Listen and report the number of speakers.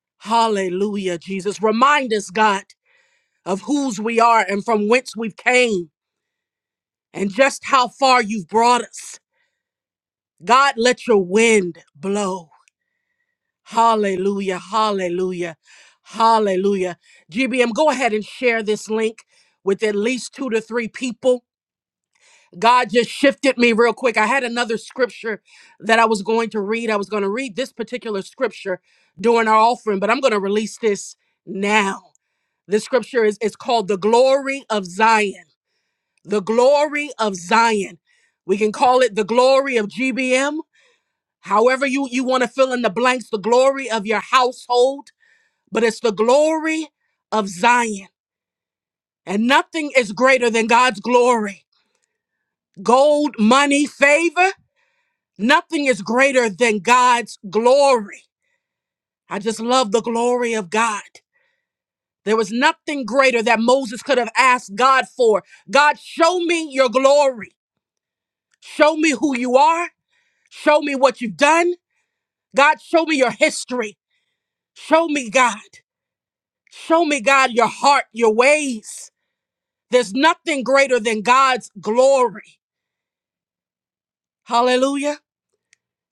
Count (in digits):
1